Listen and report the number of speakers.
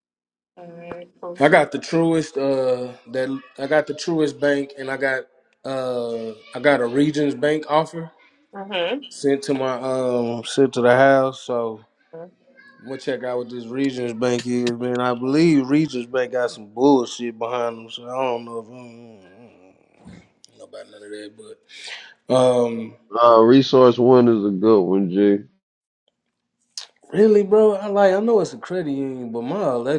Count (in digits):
3